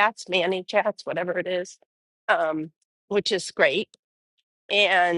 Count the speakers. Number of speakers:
1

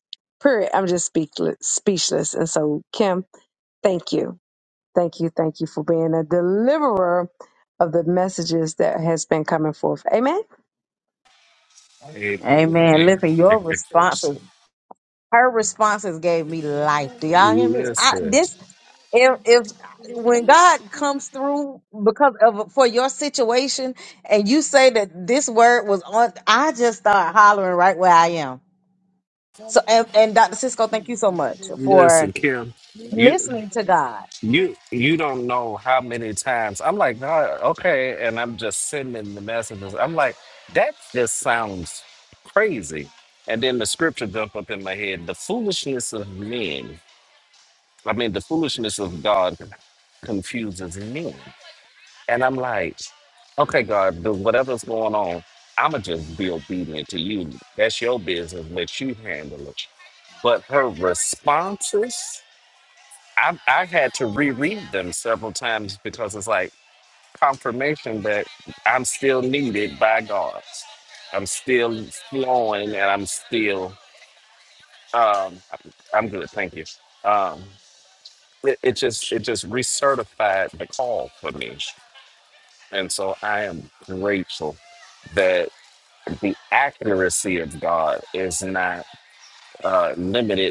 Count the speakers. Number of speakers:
3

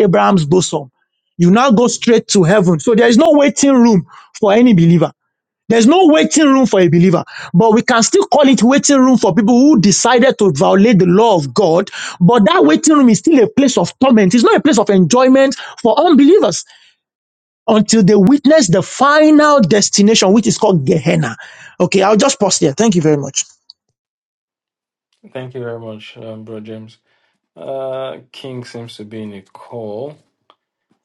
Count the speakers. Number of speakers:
2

